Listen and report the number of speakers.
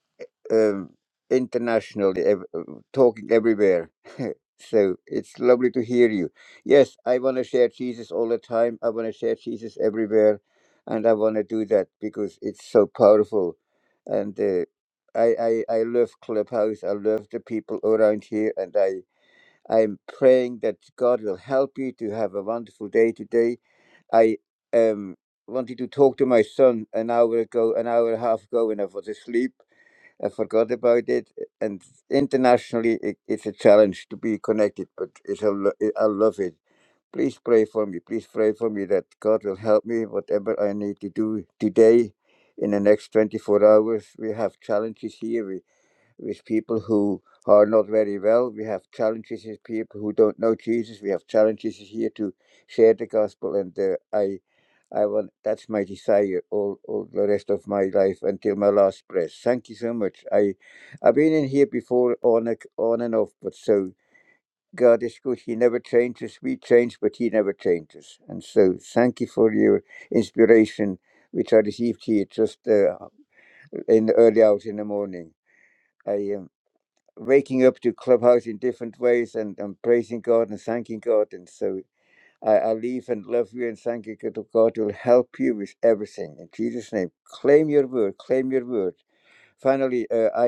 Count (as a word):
one